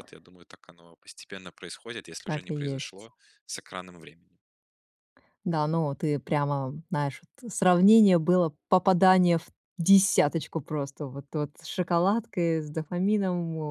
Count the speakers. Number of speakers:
two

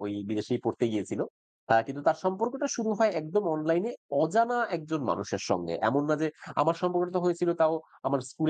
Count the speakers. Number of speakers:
one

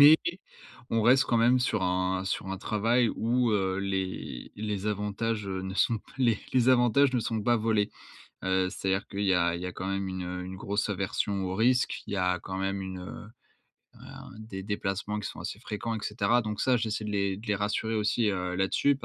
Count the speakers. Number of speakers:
one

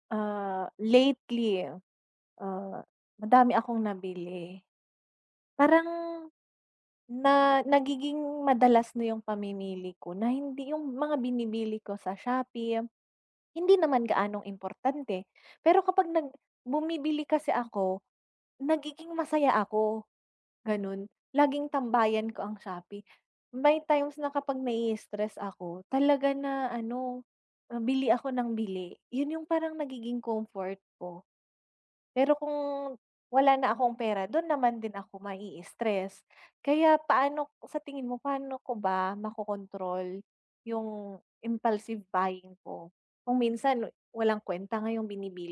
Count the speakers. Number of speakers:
one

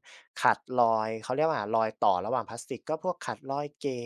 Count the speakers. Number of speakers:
one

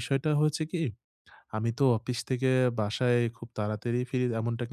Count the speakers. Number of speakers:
one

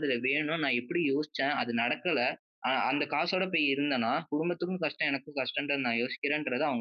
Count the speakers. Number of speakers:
one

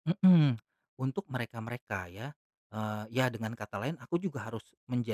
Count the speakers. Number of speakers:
one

